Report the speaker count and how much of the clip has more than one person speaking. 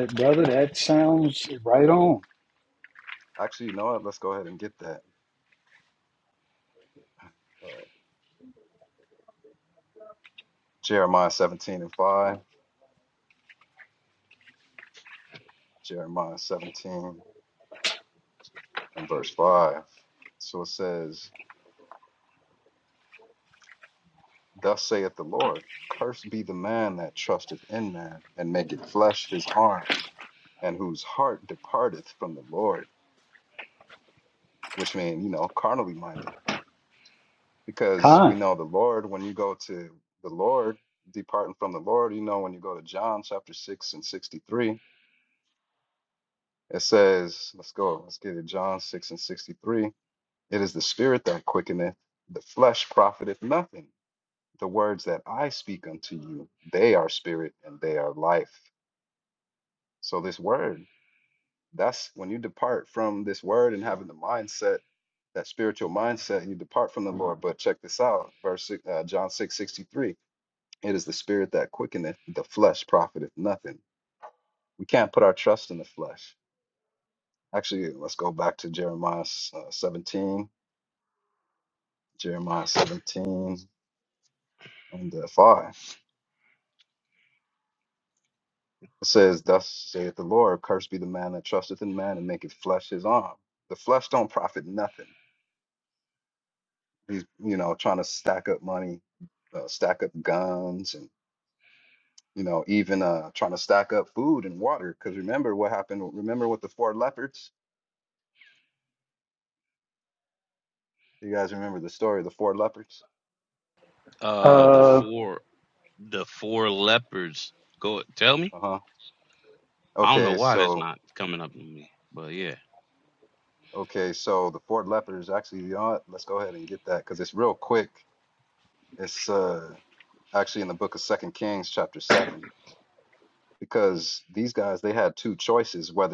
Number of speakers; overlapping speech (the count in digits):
3, about 1%